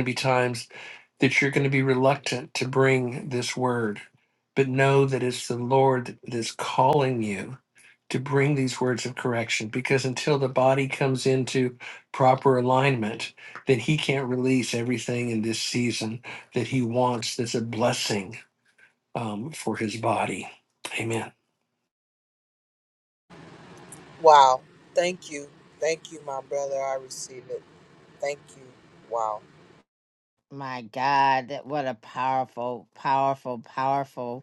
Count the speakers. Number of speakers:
3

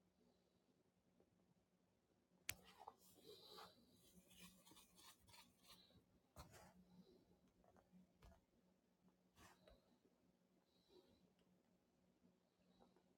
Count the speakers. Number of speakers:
0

